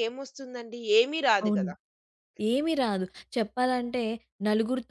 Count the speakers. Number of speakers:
2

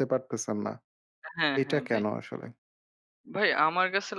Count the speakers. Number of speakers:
2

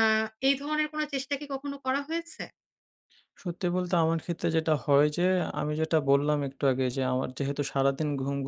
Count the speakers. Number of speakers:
2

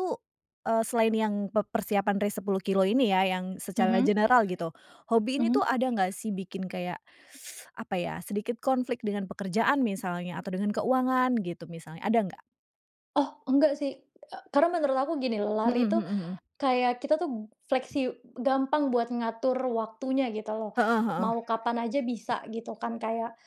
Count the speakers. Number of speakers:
2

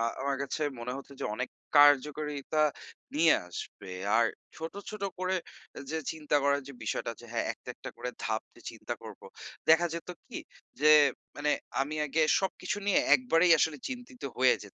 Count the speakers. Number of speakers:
1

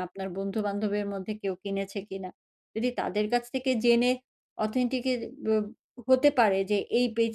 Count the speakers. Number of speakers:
1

